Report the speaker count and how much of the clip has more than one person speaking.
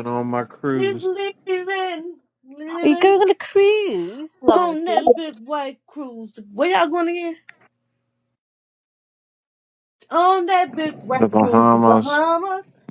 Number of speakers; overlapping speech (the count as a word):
three, about 18%